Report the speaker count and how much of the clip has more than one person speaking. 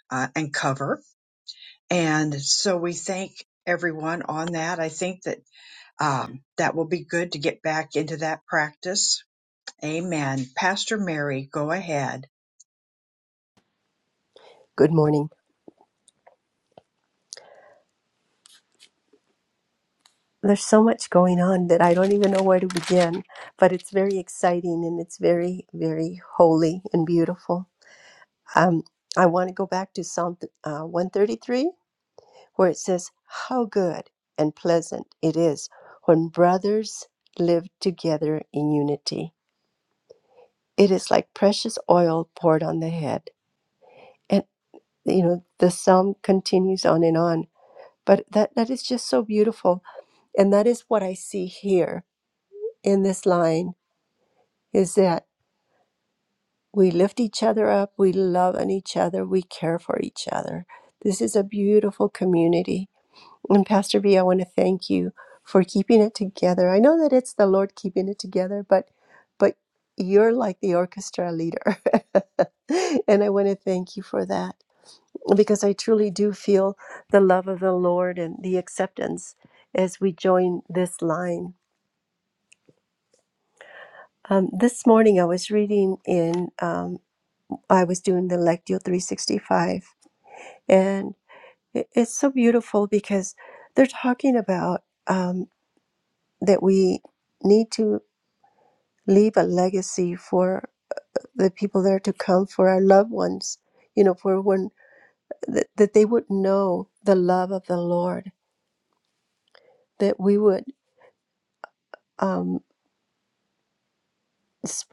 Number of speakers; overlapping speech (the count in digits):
2, no overlap